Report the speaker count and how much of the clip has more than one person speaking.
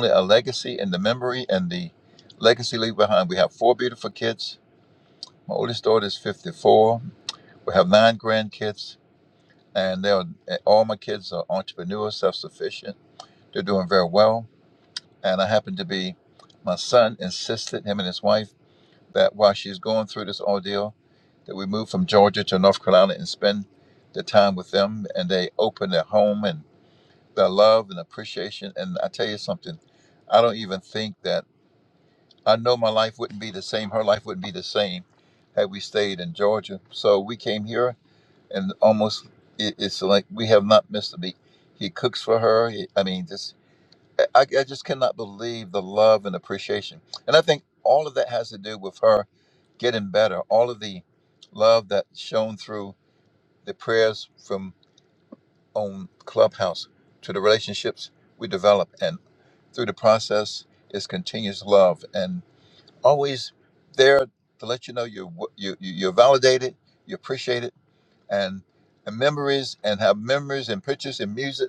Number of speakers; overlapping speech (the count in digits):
1, no overlap